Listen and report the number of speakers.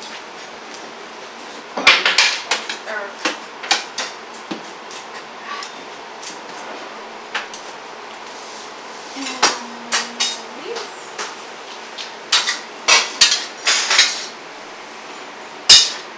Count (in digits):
1